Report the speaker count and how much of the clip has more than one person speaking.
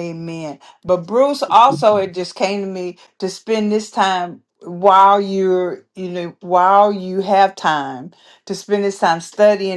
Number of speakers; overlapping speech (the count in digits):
1, no overlap